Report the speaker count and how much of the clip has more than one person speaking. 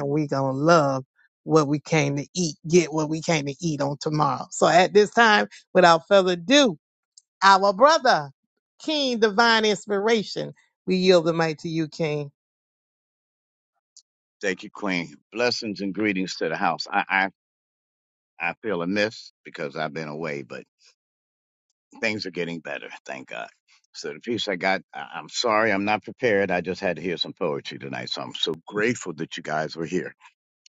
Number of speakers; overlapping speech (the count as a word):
two, no overlap